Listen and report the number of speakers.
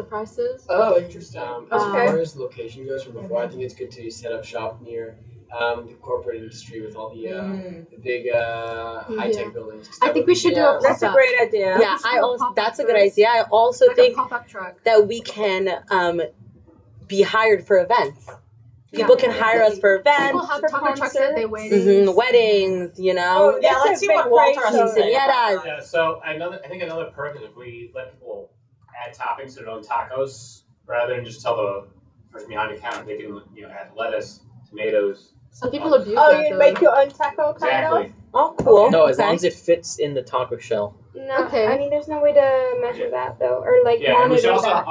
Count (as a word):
eight